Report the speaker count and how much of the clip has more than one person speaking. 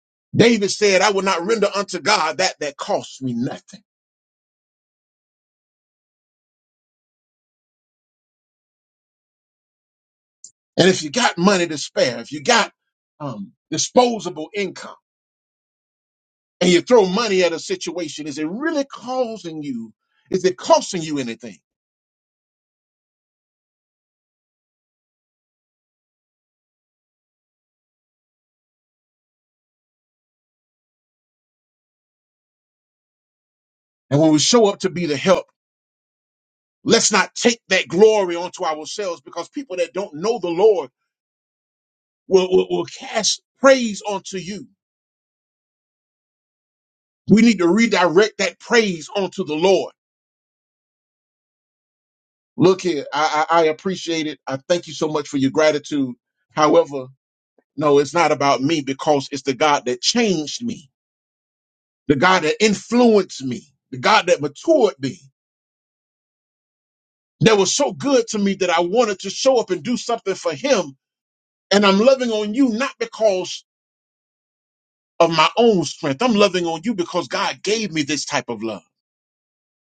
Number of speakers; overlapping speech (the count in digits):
1, no overlap